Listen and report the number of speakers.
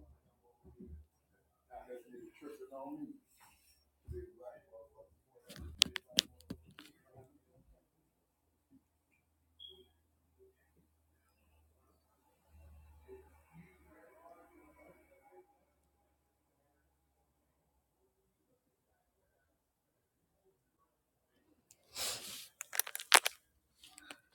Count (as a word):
zero